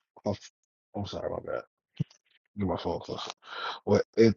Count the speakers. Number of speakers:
one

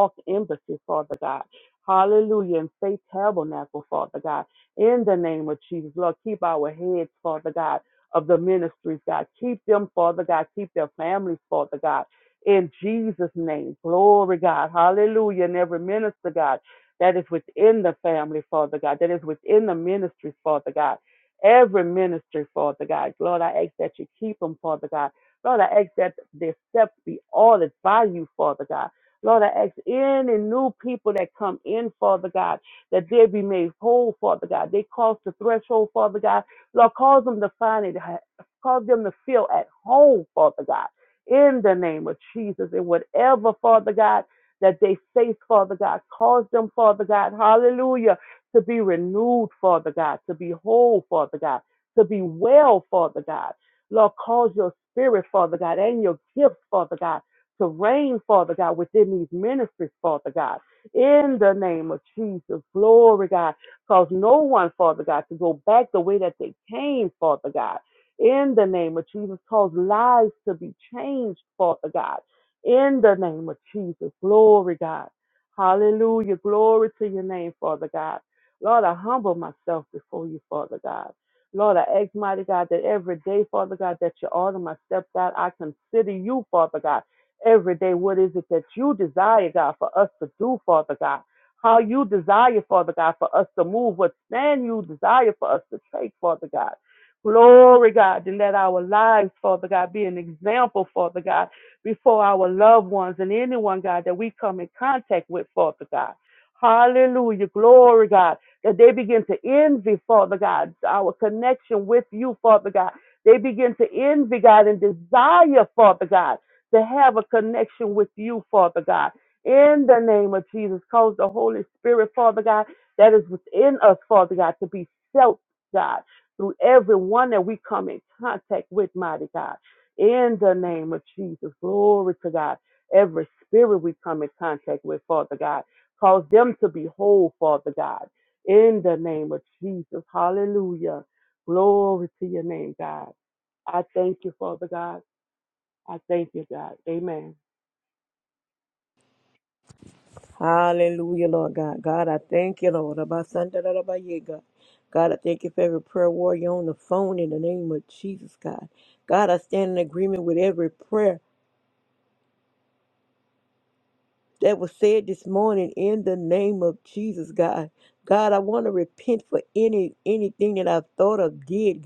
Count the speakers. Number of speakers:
two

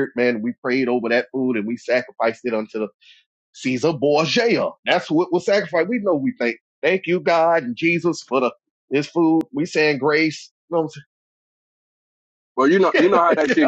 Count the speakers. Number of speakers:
two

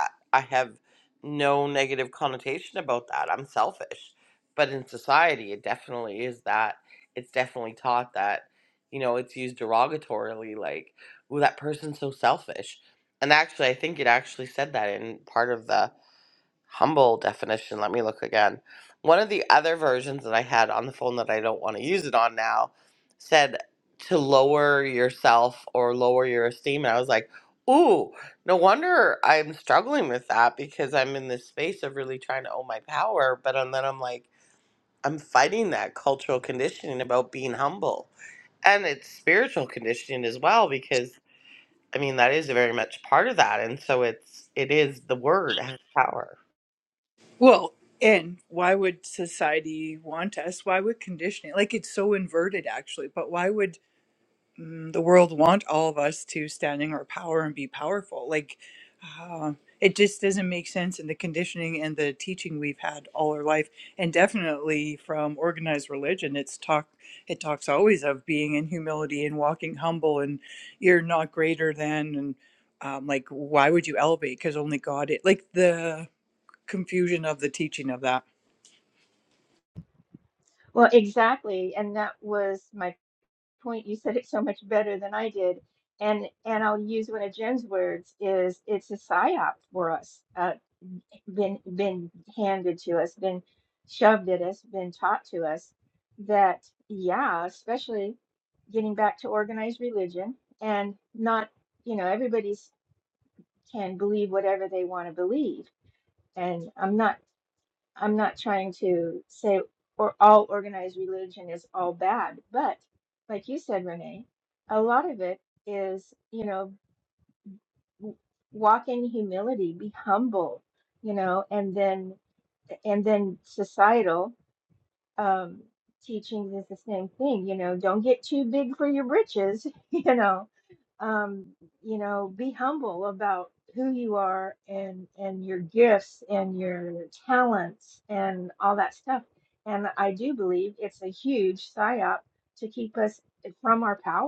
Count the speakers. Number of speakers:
three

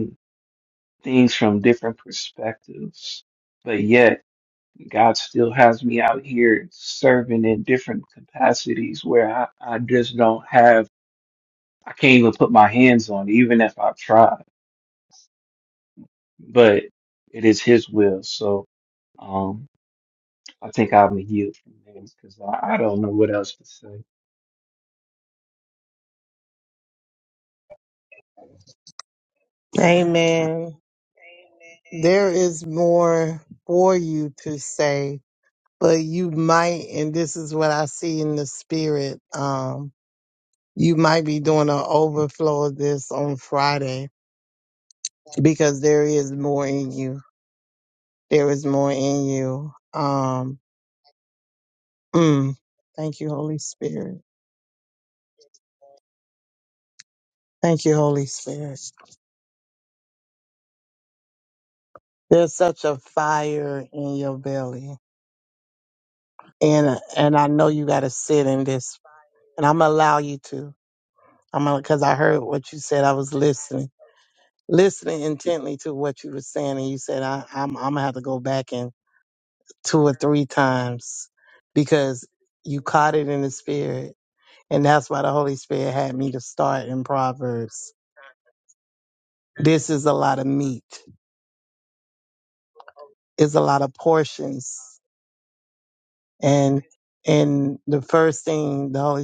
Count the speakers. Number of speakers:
two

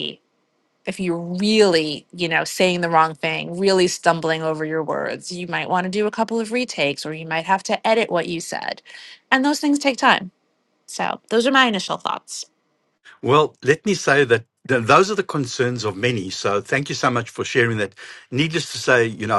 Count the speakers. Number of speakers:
two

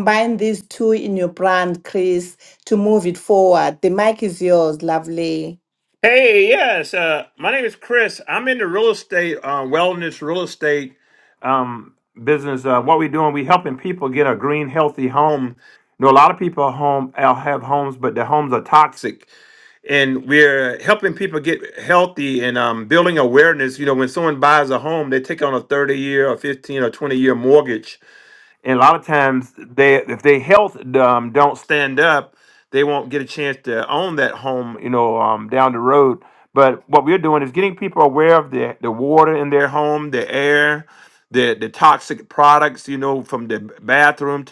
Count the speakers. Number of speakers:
two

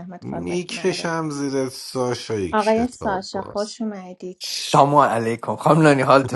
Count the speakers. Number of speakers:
three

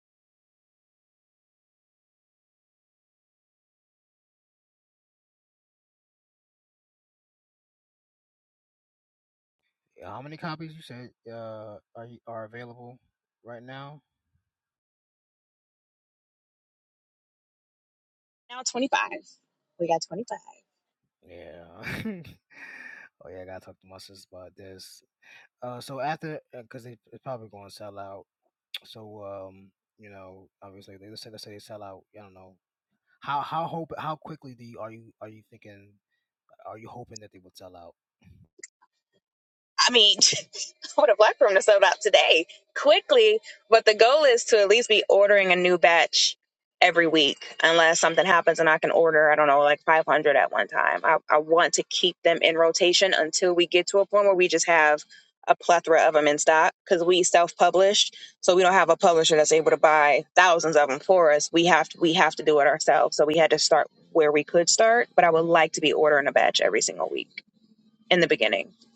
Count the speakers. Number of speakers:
two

